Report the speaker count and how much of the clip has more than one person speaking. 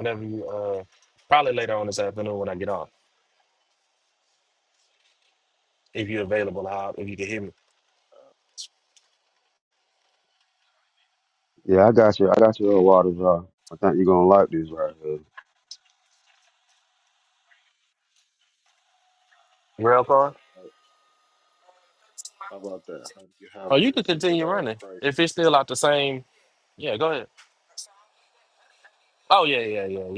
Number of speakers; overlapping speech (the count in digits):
3, about 5%